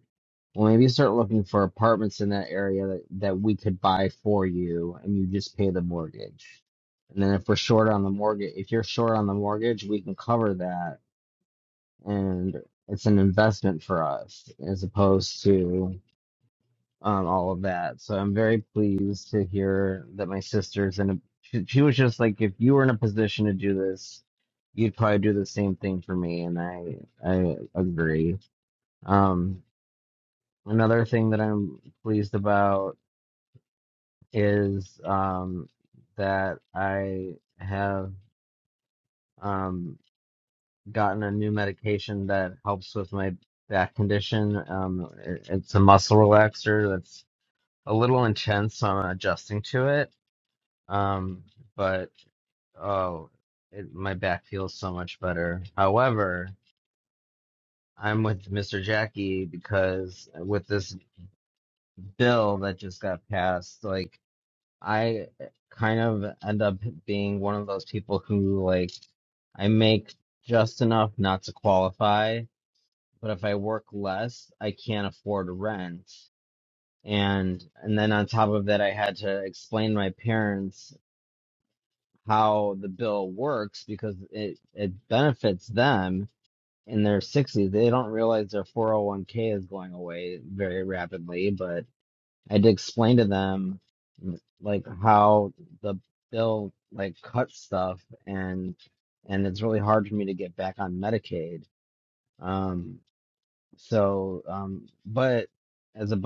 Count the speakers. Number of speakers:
1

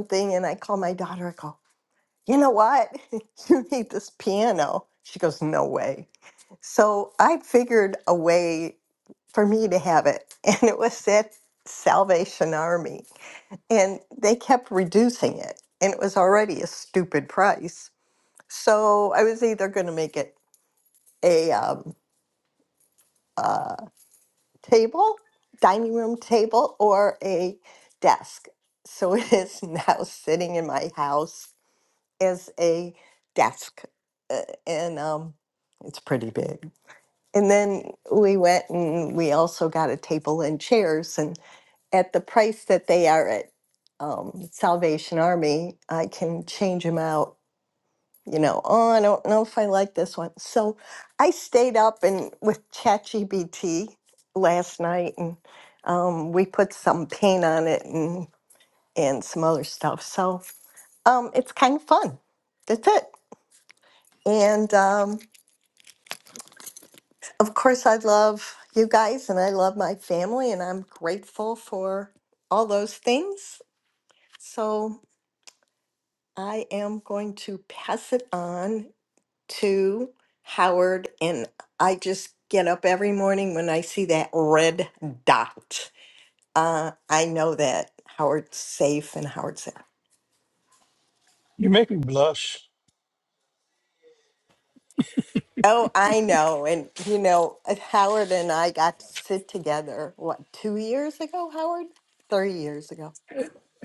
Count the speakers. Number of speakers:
2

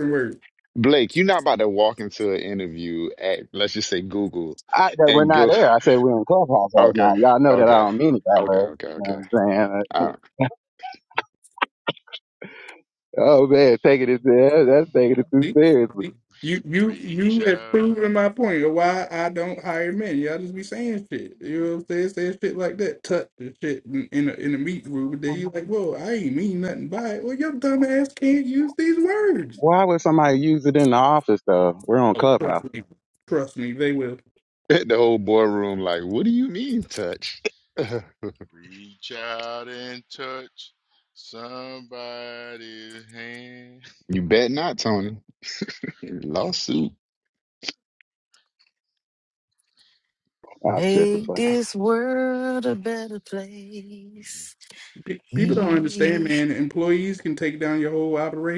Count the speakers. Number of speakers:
5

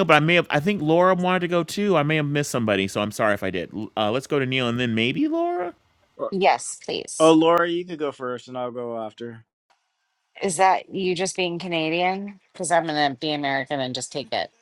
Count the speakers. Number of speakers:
3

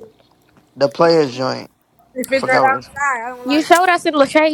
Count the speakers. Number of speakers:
3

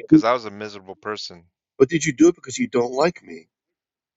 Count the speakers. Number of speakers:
2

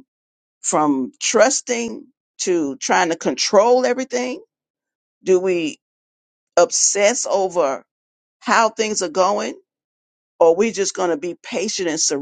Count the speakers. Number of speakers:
1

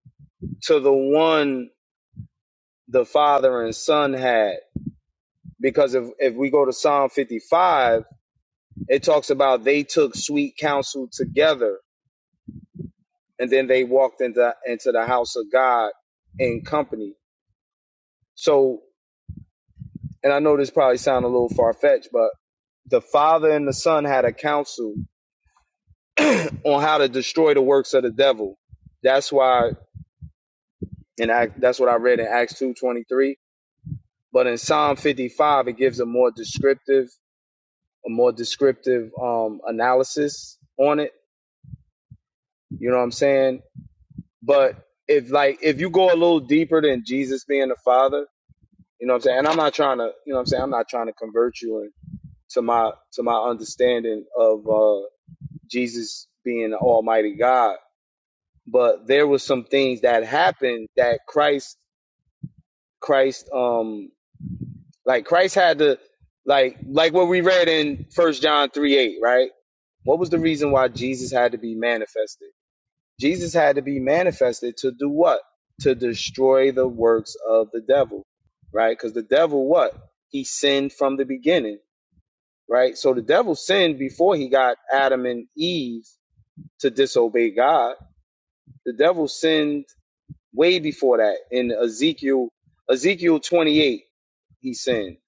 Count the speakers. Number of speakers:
1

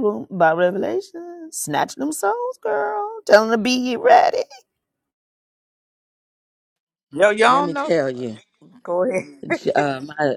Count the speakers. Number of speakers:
3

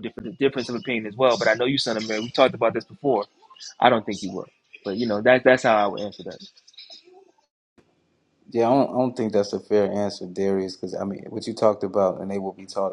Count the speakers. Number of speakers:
2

